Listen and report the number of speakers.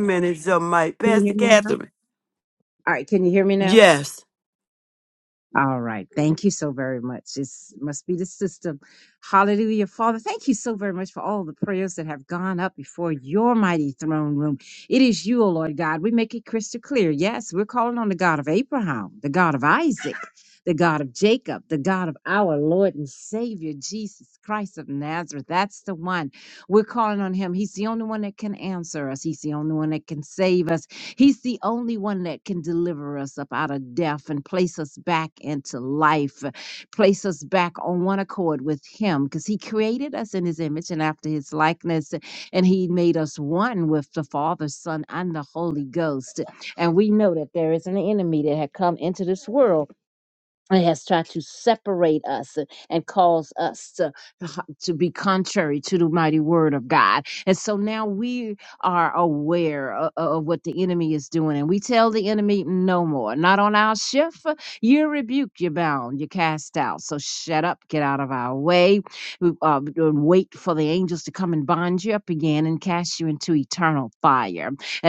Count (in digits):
2